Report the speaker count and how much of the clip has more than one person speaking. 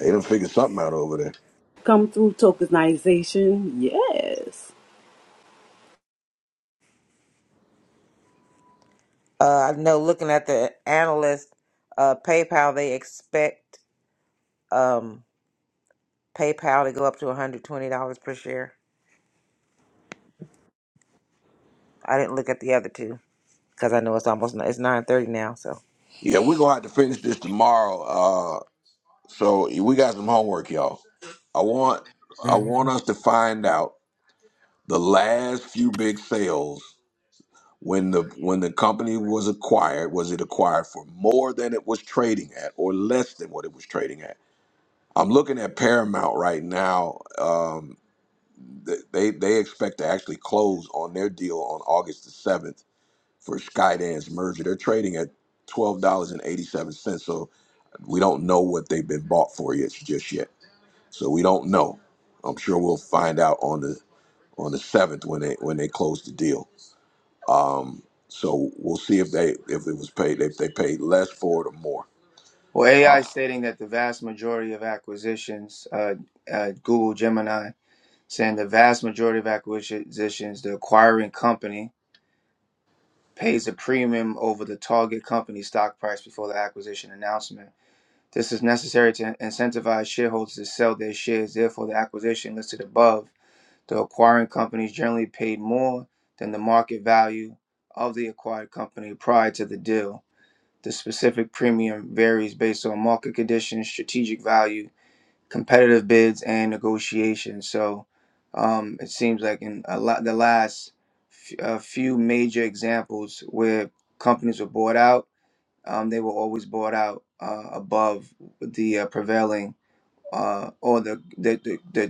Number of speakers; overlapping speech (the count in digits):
4, about 1%